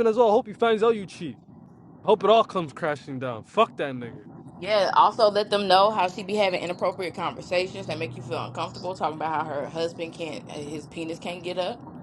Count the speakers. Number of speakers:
2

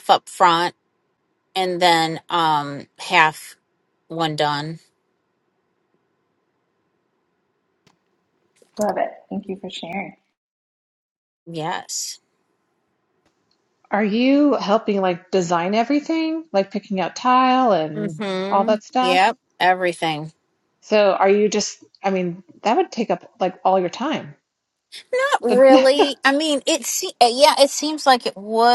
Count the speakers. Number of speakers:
3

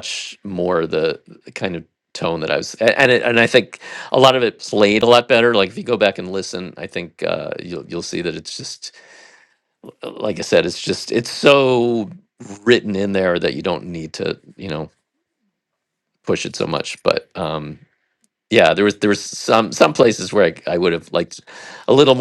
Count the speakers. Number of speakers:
1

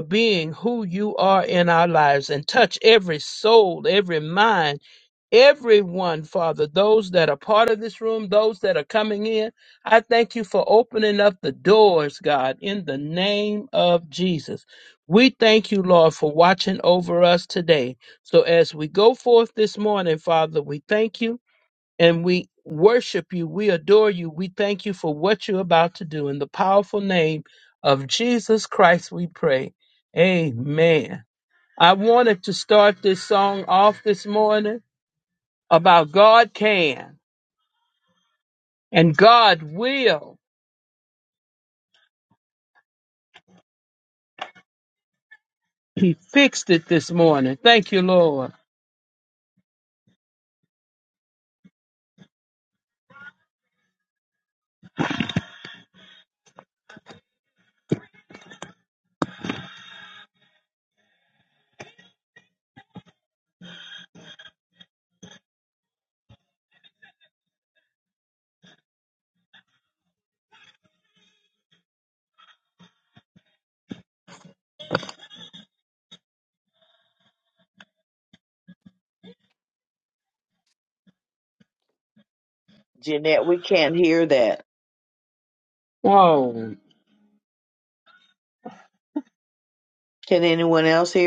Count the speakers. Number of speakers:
2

